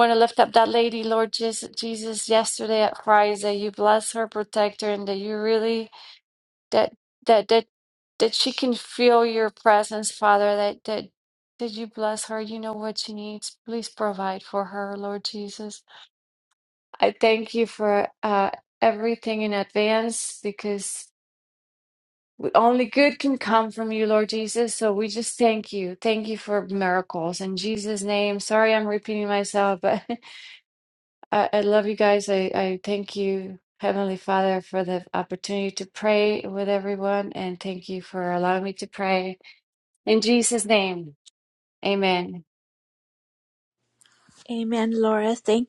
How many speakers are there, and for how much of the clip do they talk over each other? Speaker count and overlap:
2, no overlap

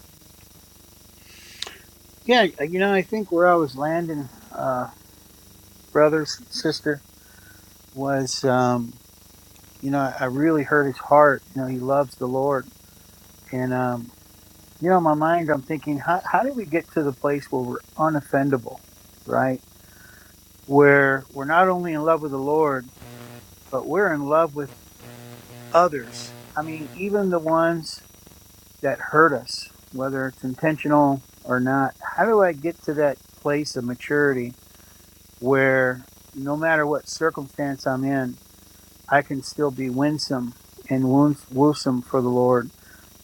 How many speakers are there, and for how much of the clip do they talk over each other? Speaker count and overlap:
1, no overlap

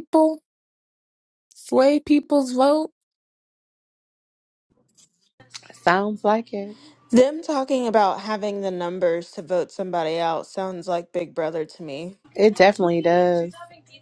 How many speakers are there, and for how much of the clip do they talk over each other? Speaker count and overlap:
3, no overlap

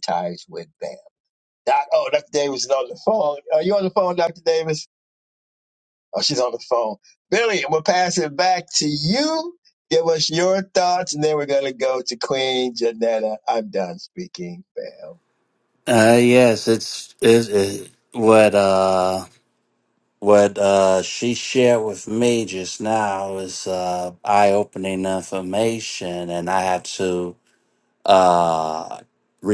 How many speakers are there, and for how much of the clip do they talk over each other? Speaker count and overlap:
2, no overlap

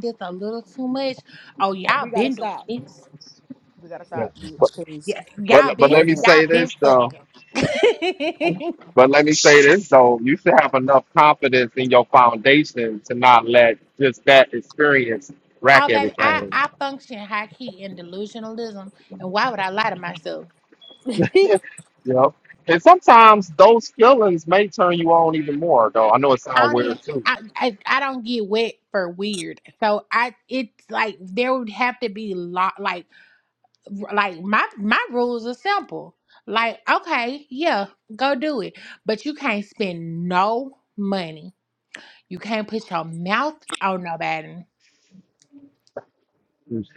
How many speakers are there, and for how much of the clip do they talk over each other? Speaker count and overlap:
3, about 8%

